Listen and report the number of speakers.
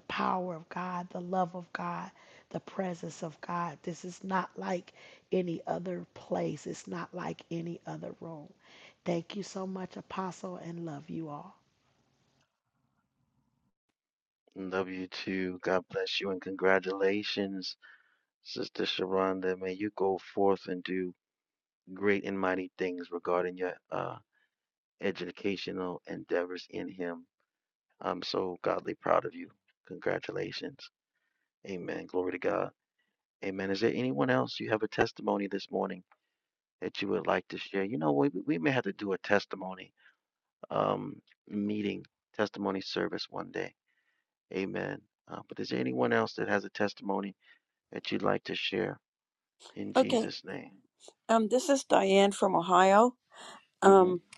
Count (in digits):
3